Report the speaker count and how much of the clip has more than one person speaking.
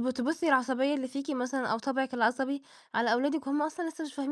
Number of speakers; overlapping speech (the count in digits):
1, no overlap